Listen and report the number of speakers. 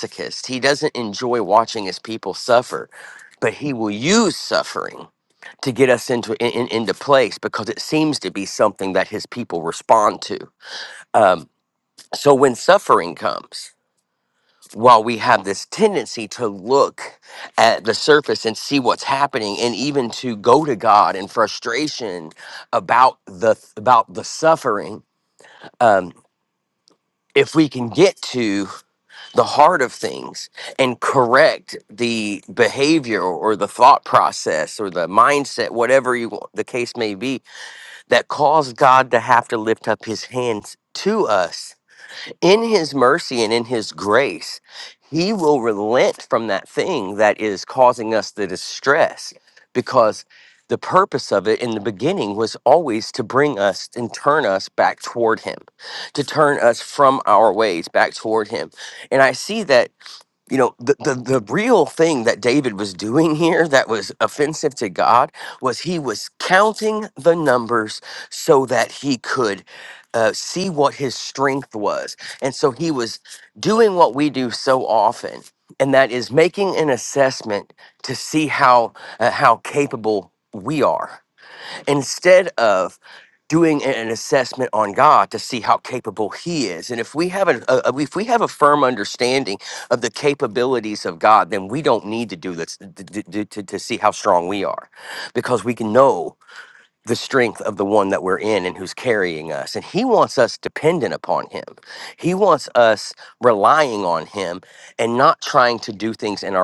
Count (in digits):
1